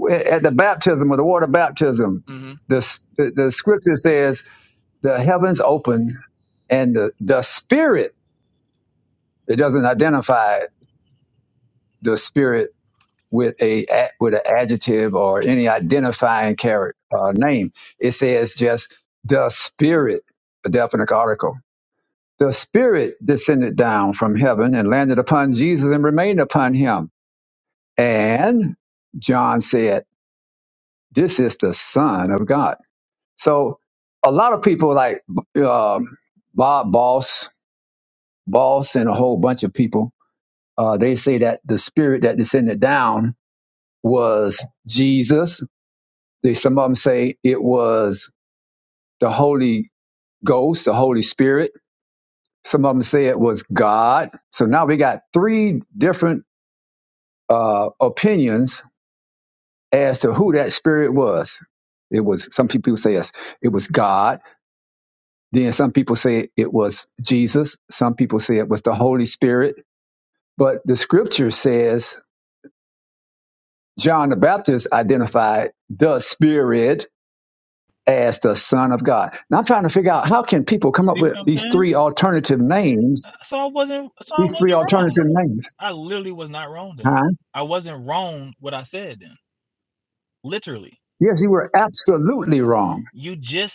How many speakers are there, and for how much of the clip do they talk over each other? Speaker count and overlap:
2, about 2%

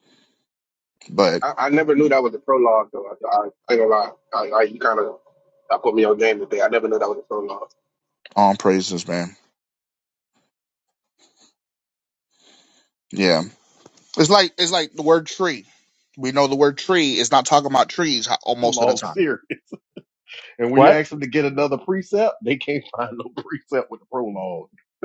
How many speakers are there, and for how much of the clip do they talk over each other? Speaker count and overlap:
3, about 3%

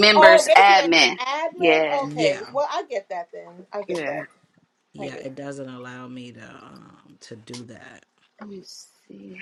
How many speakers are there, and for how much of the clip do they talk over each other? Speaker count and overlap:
3, about 24%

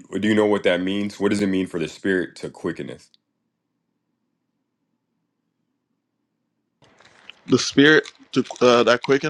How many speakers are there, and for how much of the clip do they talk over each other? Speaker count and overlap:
2, no overlap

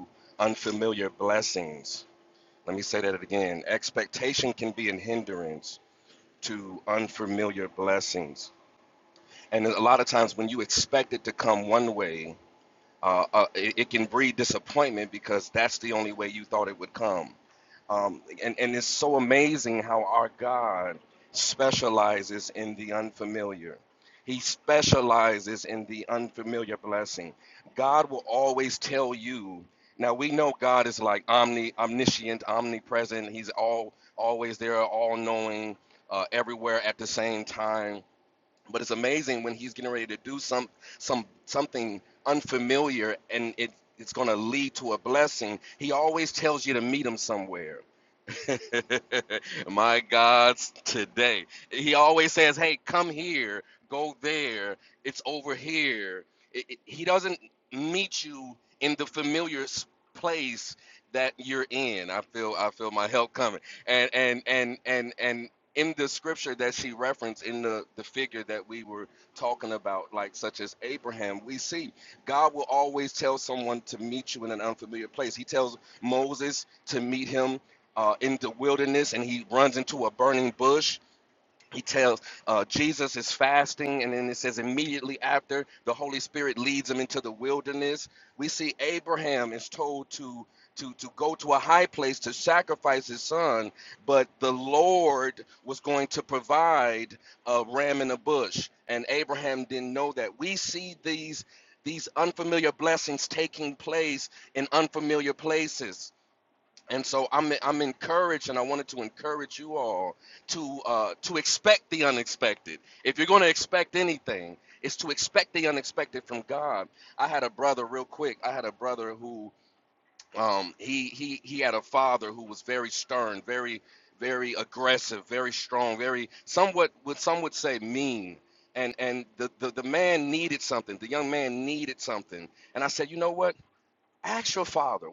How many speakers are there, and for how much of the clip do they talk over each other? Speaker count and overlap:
1, no overlap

